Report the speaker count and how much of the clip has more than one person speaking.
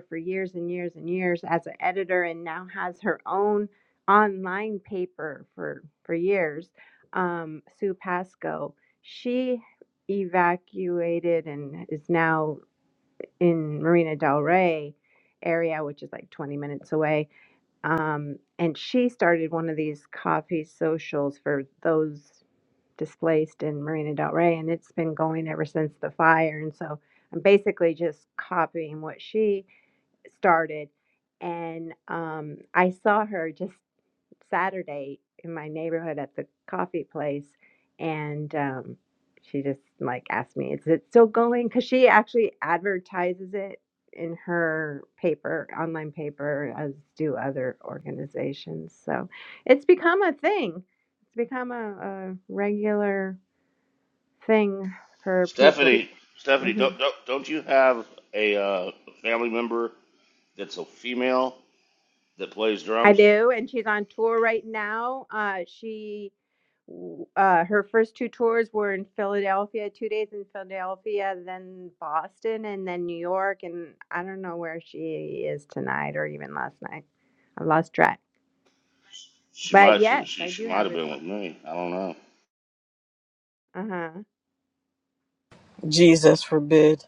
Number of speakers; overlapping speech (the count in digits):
3, about 3%